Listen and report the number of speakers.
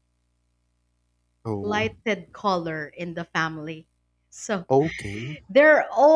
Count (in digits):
2